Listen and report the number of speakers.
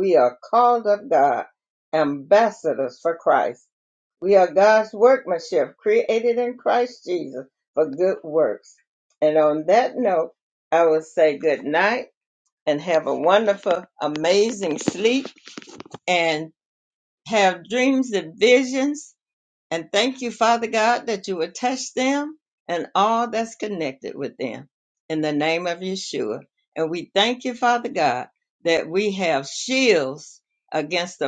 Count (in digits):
1